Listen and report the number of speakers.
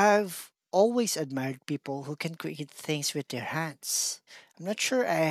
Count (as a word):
one